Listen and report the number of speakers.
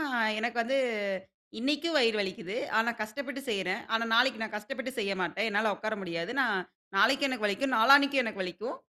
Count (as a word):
one